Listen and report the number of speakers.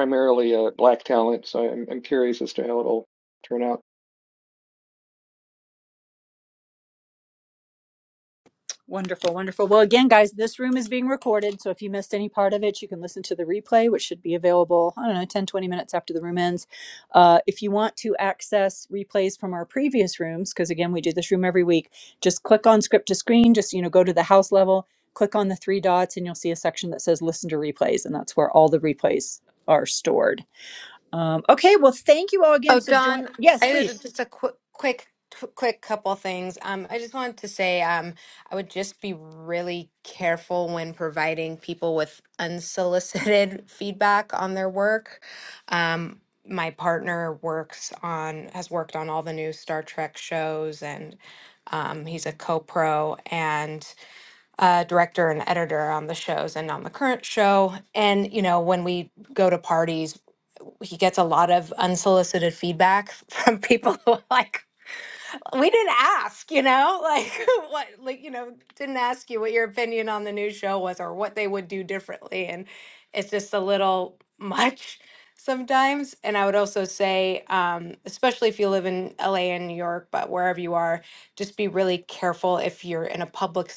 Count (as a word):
three